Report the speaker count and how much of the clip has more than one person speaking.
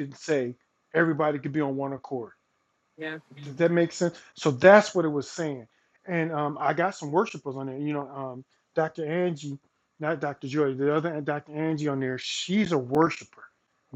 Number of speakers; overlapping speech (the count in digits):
1, no overlap